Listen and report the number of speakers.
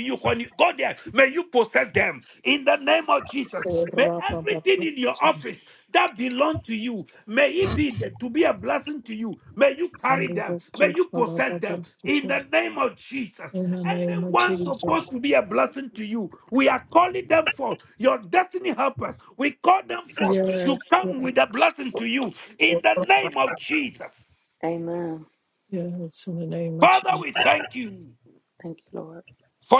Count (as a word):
three